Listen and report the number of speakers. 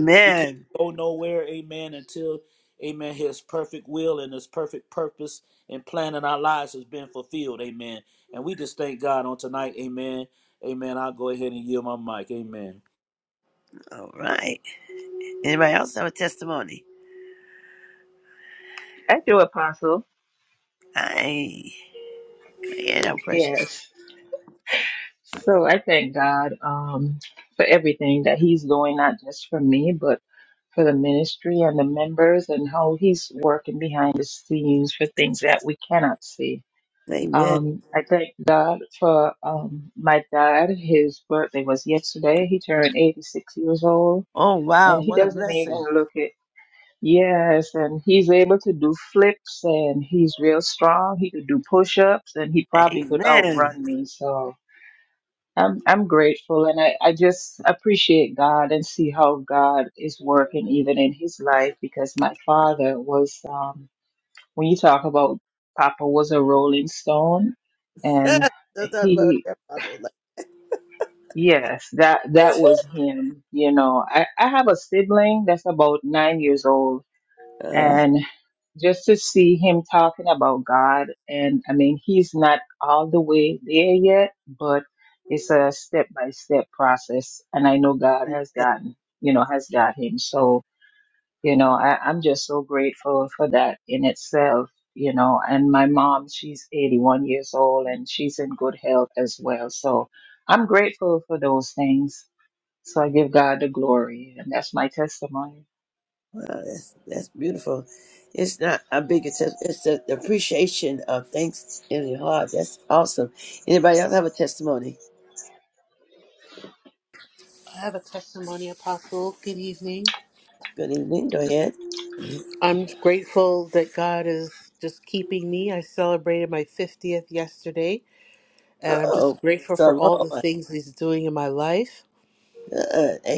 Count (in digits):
4